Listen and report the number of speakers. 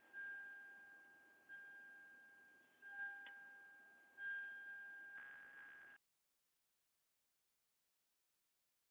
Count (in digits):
0